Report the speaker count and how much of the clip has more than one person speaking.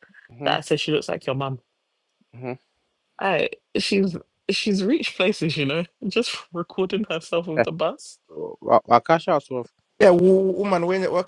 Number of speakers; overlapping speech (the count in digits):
3, about 2%